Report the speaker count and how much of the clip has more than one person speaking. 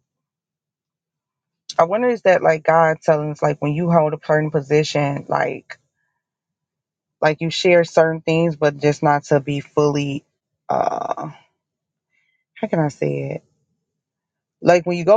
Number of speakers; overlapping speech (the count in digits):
1, no overlap